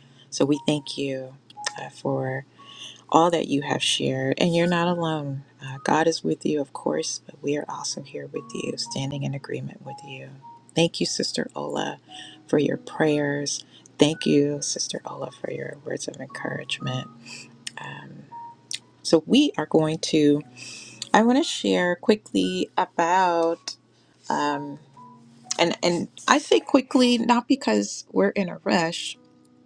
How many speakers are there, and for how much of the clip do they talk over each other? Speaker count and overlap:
1, no overlap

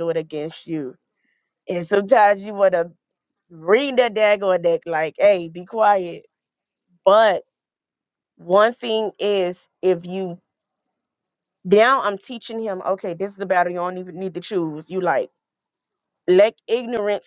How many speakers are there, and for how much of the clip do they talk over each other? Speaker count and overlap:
1, no overlap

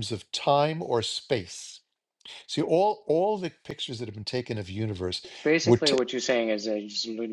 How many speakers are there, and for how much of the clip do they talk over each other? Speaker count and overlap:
2, about 5%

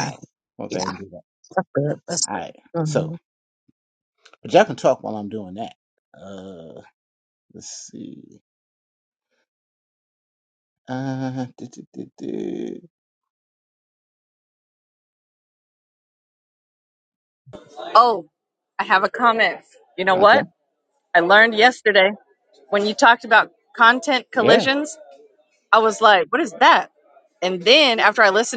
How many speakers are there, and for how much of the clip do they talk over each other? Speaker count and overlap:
3, about 6%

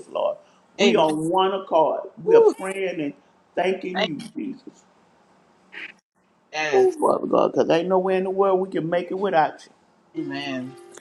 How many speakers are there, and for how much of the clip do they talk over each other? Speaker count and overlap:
2, about 8%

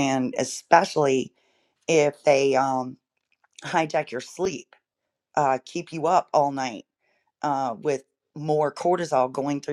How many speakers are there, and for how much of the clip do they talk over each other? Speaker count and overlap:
1, no overlap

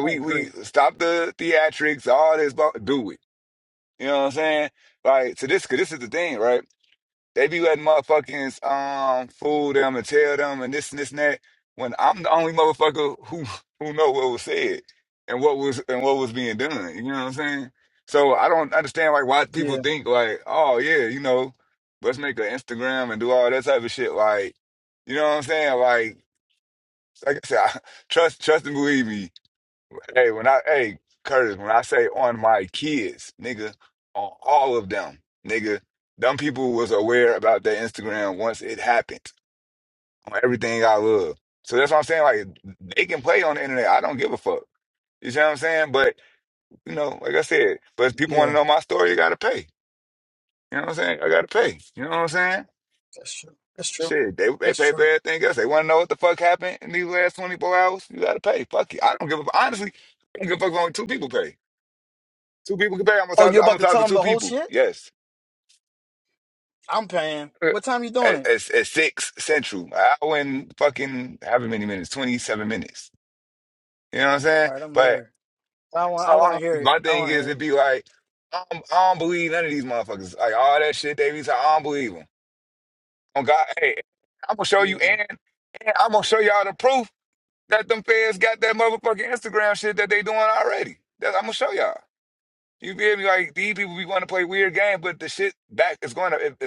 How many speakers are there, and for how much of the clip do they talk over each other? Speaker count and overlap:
2, about 5%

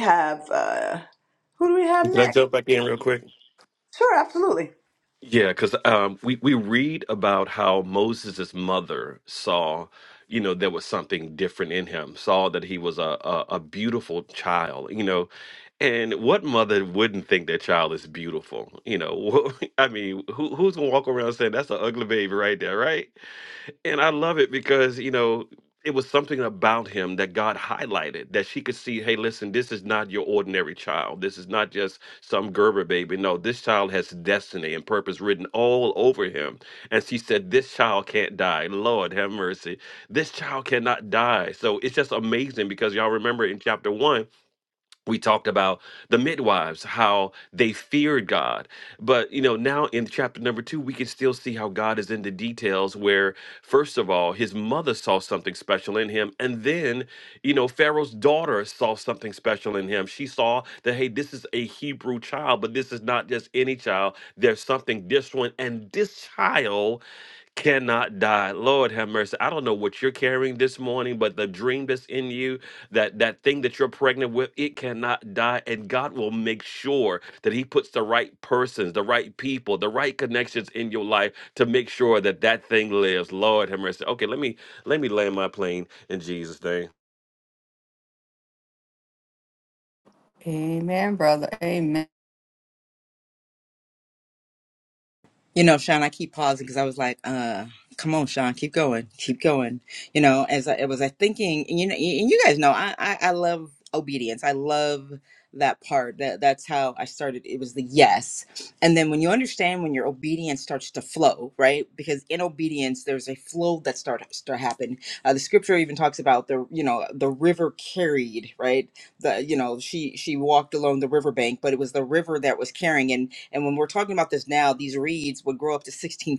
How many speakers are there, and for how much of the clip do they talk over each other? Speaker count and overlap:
4, under 1%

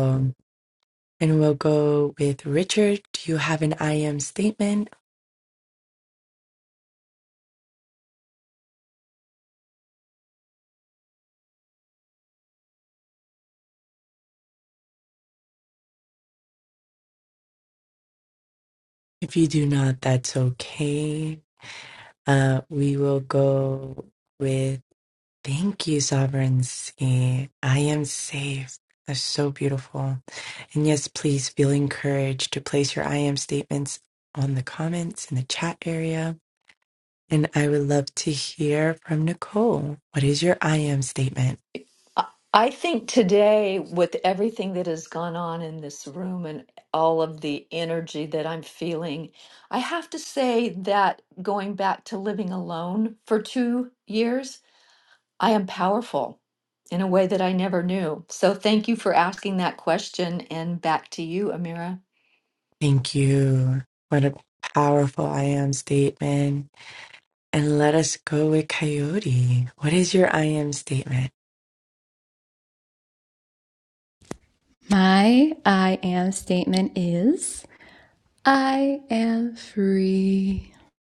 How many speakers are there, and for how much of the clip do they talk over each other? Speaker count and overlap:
3, no overlap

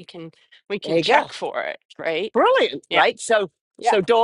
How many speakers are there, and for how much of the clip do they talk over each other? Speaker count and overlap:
2, about 15%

